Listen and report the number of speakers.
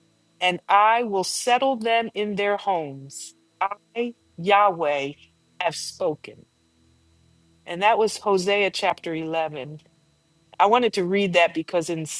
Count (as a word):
one